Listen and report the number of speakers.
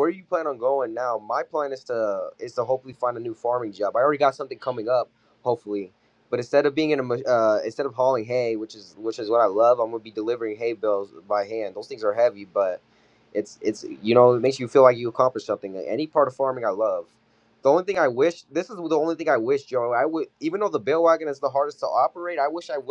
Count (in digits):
1